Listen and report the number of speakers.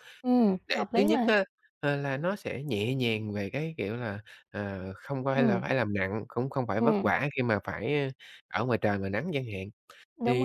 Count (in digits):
2